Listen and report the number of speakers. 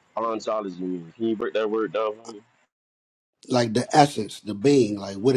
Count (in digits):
2